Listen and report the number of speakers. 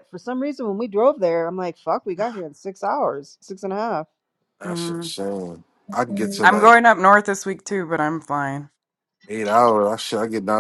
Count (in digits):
3